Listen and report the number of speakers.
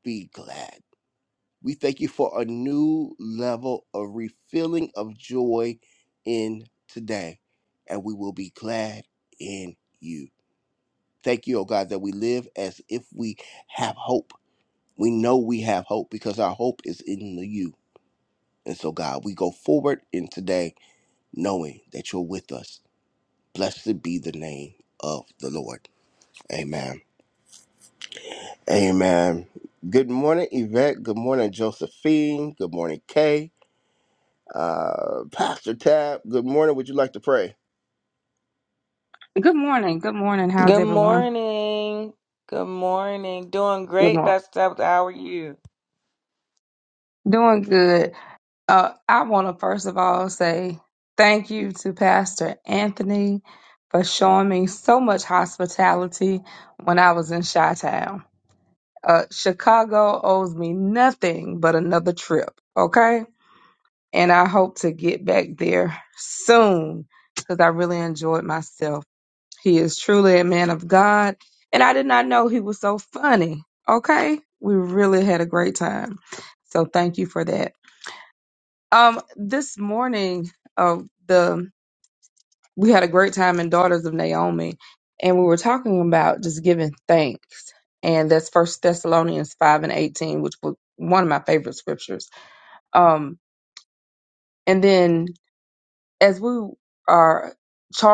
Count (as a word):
three